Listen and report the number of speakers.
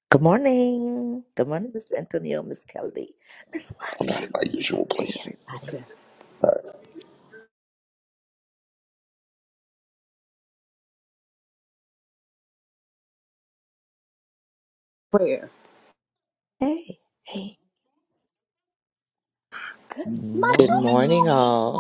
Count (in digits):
4